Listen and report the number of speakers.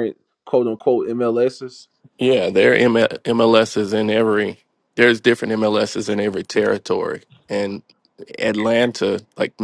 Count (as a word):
two